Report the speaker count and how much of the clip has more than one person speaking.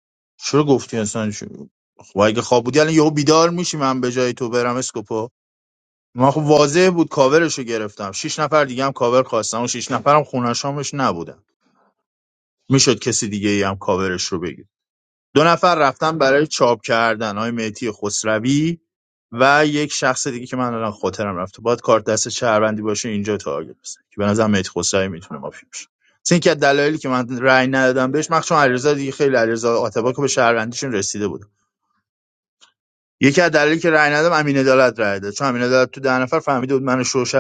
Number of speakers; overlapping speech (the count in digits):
1, no overlap